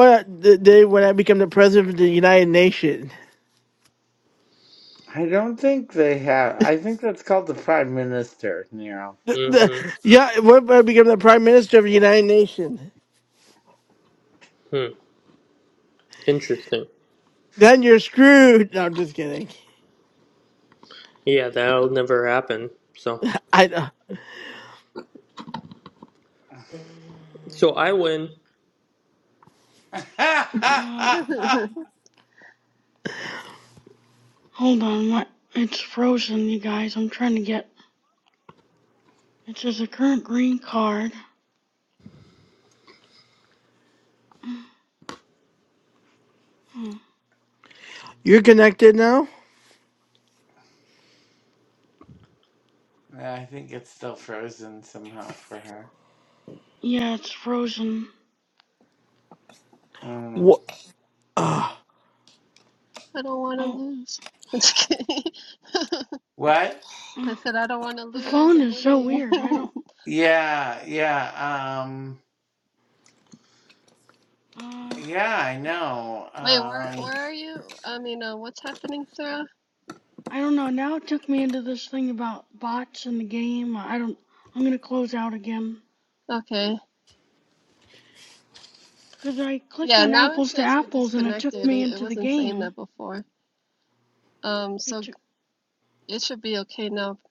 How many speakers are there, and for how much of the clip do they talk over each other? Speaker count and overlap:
5, about 6%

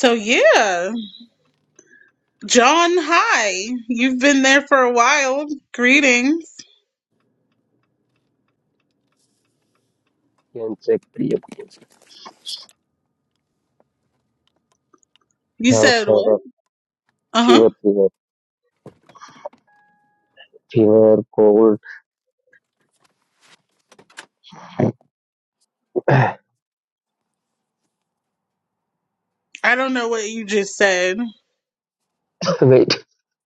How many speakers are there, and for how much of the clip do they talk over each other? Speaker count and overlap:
2, about 2%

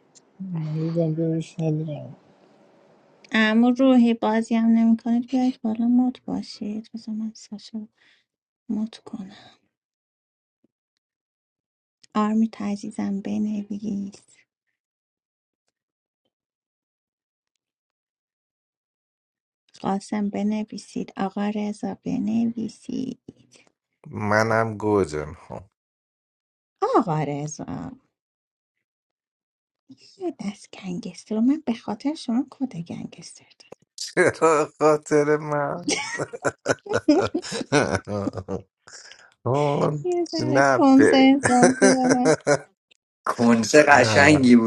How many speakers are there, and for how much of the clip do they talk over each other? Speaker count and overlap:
4, about 2%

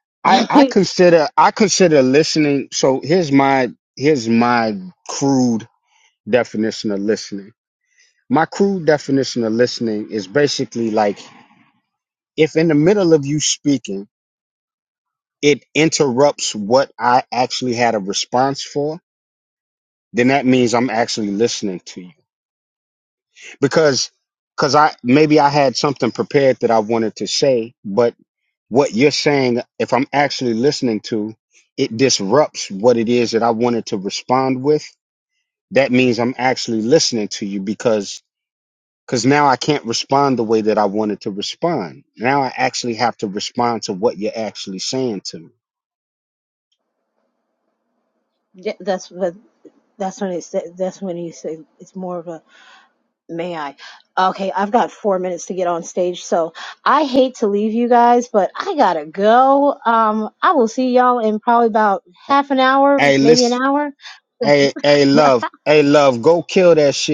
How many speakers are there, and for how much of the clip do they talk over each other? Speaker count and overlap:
2, about 1%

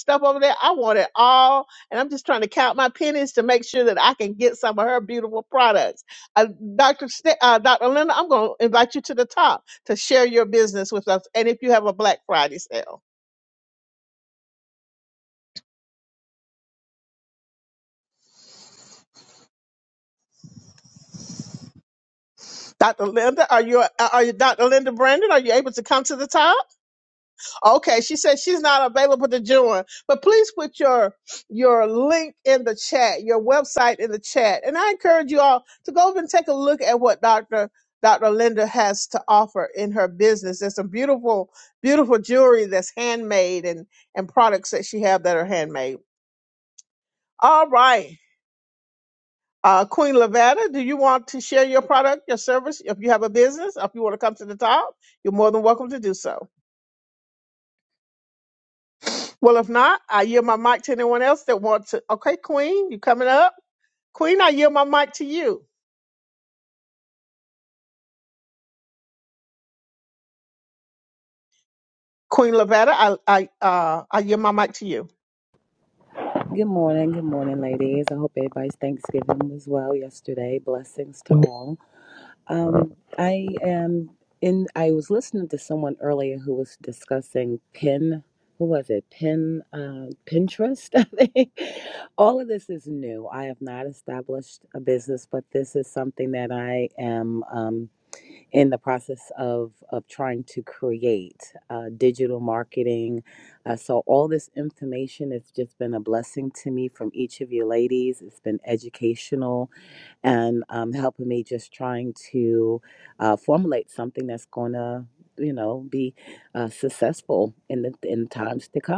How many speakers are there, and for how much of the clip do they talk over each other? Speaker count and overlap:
2, no overlap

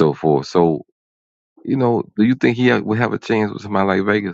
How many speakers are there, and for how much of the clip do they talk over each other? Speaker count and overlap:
1, no overlap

